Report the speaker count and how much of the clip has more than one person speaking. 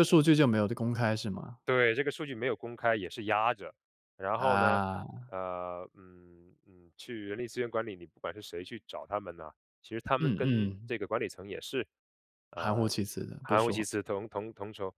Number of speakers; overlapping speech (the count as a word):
two, about 12%